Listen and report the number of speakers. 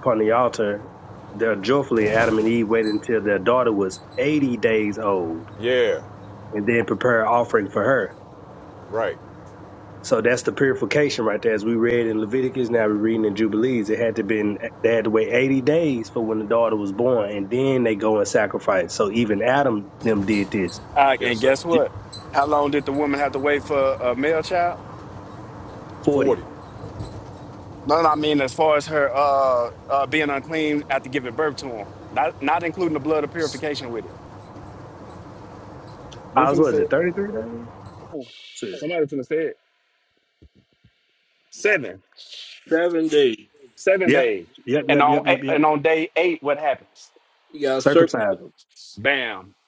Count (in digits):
4